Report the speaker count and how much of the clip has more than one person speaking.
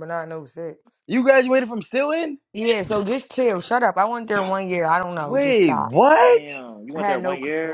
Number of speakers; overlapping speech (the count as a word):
three, about 21%